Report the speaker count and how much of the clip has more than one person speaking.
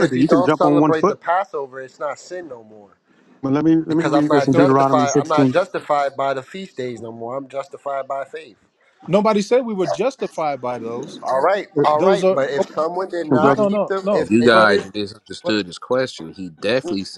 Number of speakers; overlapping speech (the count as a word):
four, about 31%